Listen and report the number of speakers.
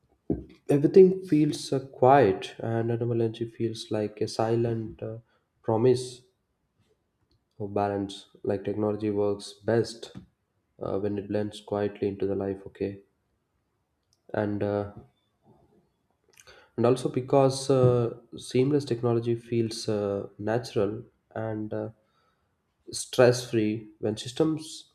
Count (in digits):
1